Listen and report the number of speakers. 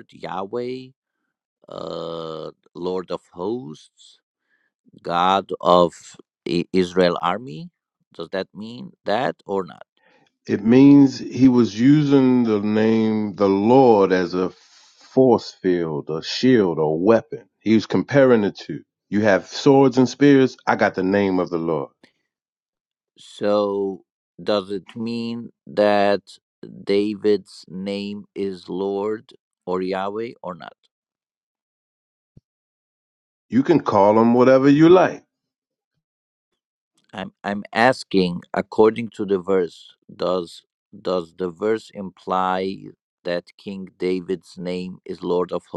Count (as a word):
two